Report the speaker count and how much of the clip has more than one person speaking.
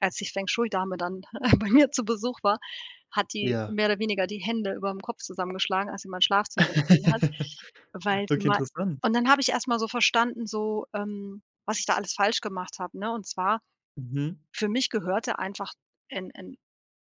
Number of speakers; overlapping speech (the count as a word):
two, about 4%